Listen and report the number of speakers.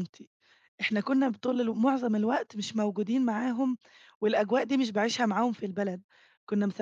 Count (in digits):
1